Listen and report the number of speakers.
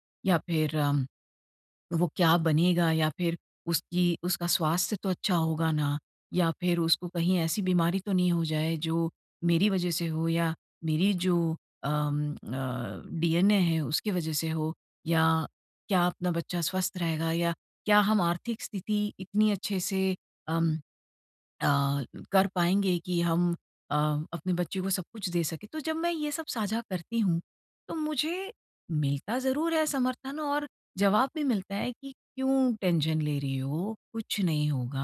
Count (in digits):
1